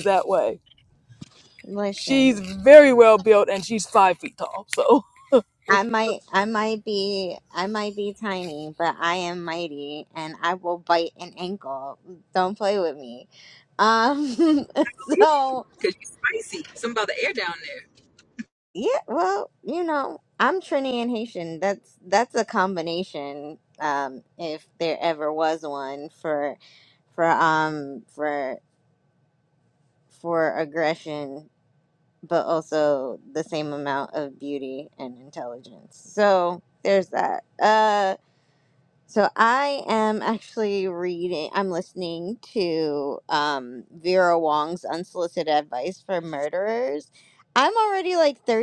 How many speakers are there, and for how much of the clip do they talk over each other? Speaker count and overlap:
three, about 1%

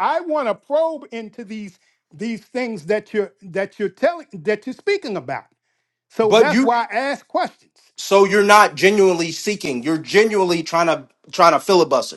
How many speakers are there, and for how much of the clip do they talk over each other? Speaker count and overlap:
two, about 3%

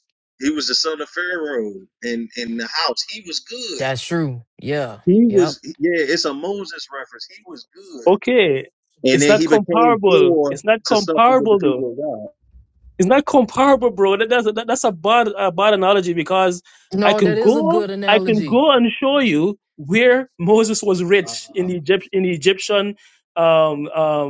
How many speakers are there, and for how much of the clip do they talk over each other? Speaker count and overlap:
three, about 19%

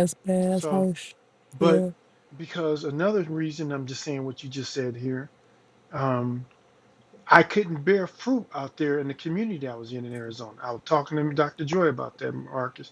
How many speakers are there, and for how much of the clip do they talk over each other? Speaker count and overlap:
two, about 4%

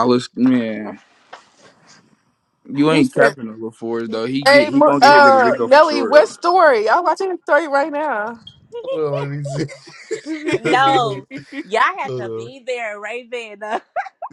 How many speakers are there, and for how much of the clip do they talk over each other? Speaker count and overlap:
four, about 23%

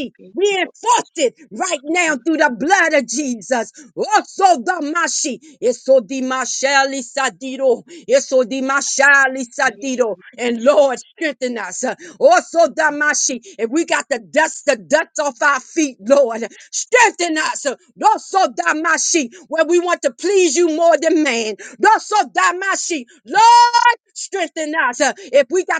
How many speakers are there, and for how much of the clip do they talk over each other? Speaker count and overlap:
one, no overlap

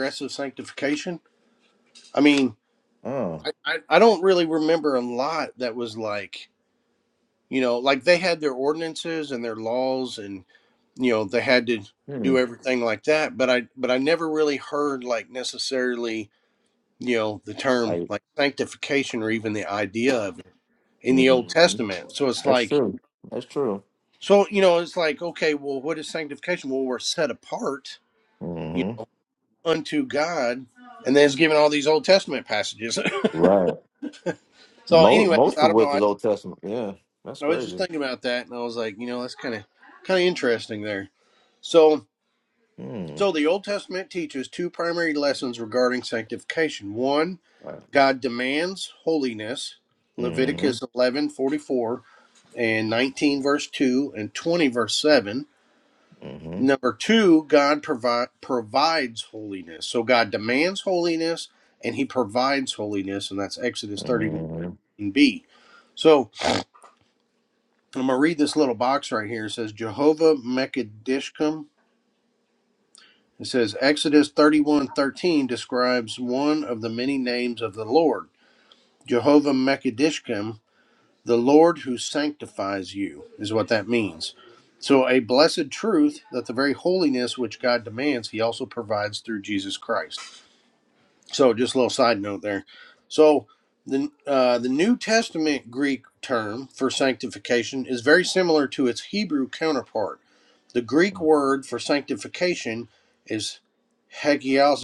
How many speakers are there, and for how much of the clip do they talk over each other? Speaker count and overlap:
two, about 3%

